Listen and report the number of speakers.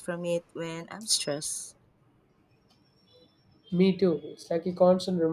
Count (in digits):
2